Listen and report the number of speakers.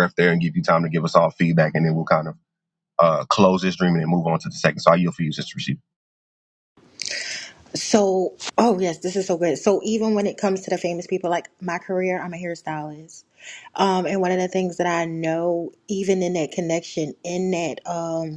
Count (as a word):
two